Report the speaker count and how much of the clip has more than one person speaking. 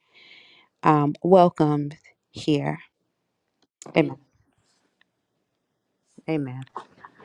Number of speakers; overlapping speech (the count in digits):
1, no overlap